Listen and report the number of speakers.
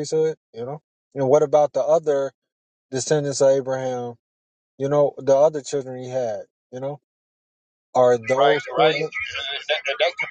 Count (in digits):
2